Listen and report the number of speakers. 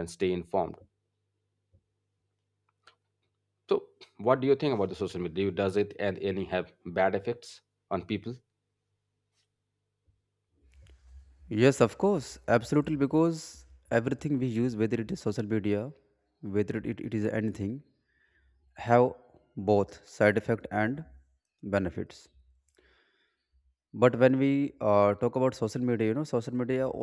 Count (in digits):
2